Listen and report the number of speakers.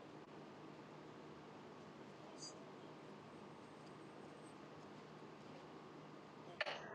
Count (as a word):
zero